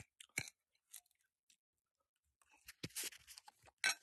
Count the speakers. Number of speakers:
0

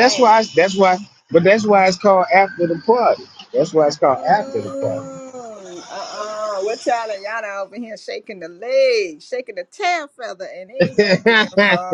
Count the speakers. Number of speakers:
2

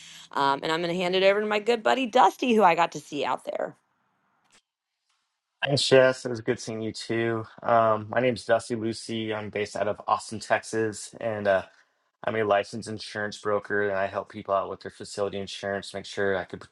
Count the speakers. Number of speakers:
2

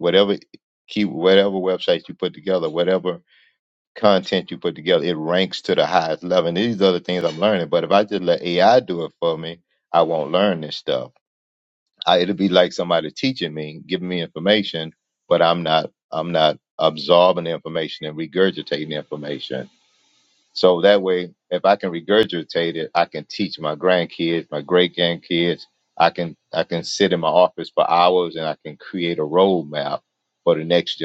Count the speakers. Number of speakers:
1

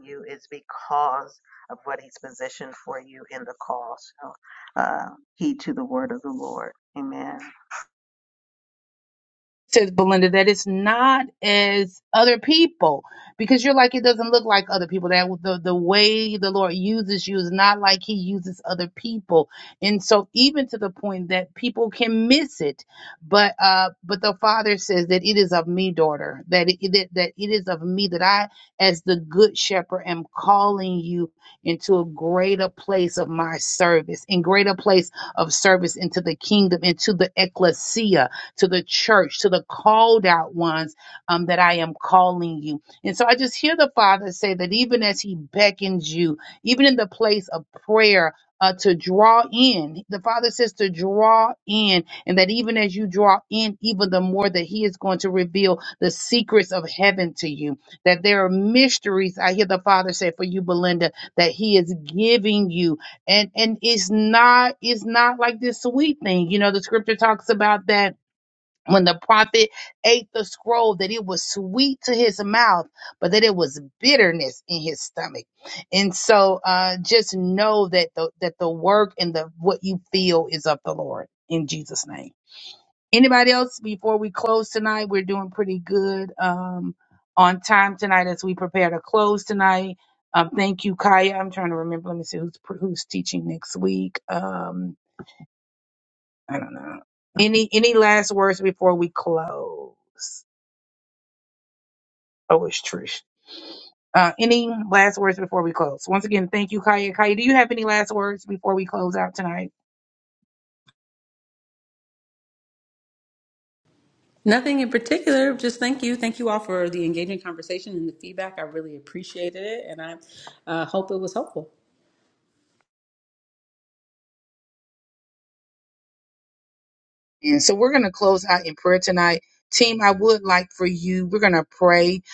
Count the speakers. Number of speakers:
3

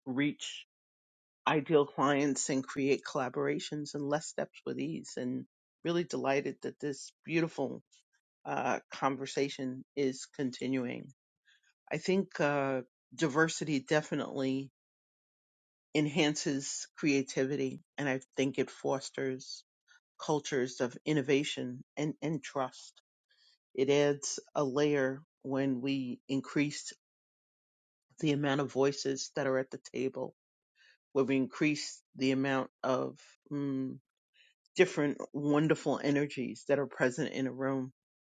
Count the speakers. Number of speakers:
1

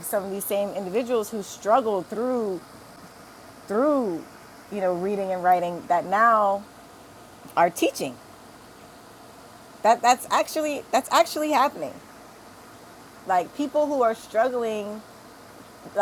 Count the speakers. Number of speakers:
1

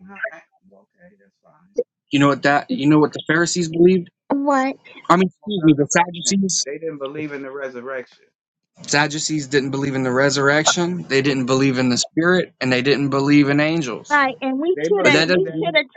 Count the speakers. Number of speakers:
3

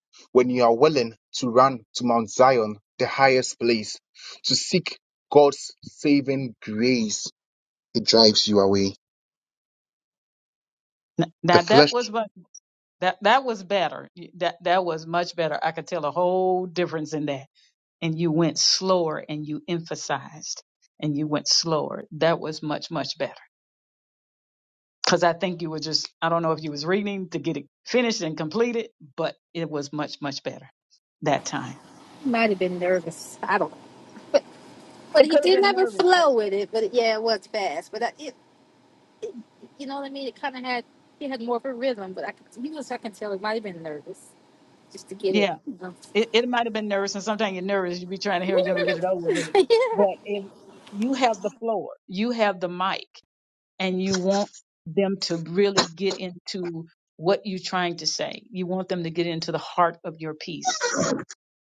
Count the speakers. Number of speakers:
3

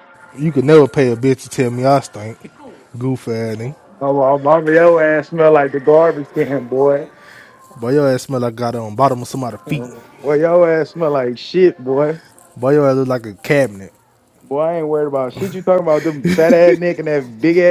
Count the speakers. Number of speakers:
2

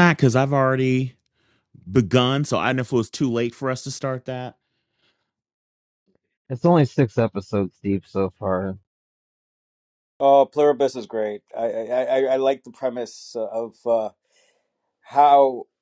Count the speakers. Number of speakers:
3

